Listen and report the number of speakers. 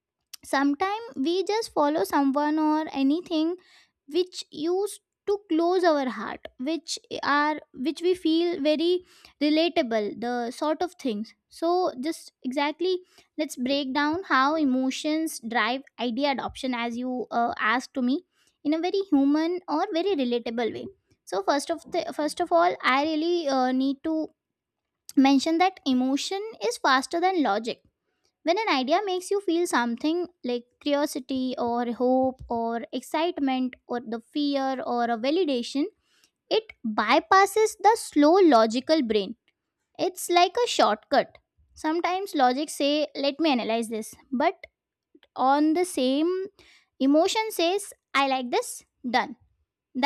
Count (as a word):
one